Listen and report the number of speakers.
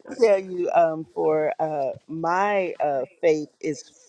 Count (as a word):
one